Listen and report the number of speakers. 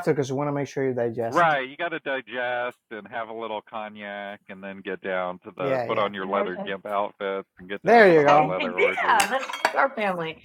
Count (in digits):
3